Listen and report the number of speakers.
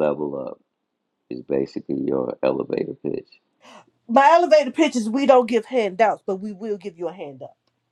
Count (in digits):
2